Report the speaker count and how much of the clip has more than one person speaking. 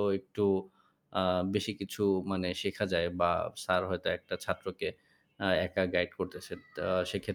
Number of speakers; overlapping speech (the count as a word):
one, no overlap